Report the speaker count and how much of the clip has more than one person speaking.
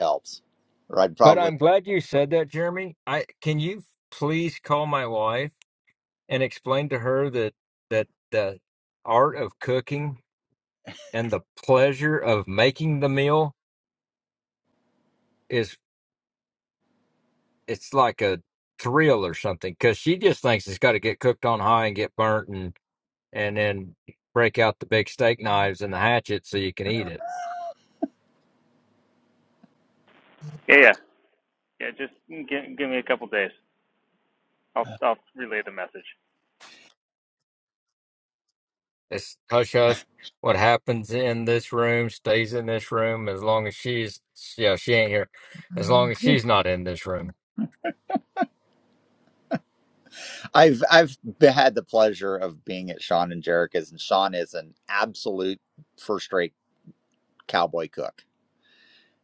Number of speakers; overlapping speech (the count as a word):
three, under 1%